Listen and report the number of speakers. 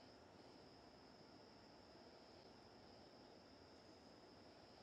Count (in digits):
0